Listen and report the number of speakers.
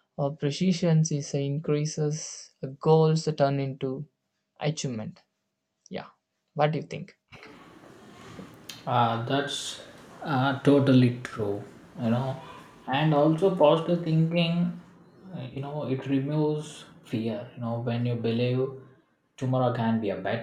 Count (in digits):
2